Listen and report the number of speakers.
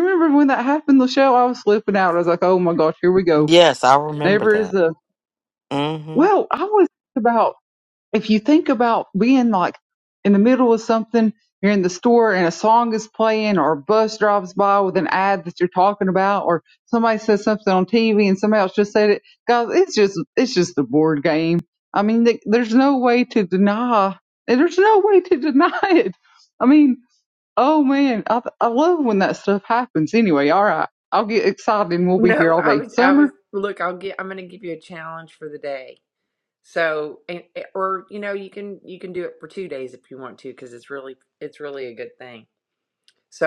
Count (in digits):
3